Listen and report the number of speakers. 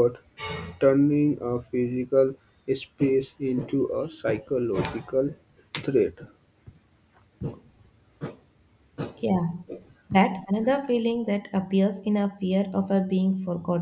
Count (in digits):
2